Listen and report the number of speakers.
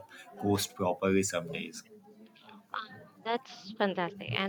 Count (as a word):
two